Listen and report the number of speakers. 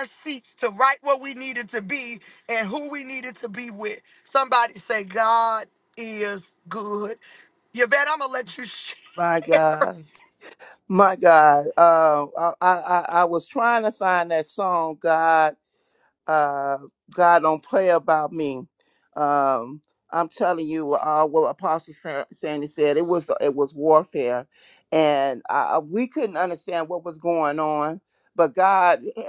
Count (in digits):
2